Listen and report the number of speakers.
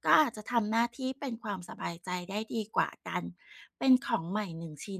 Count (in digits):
1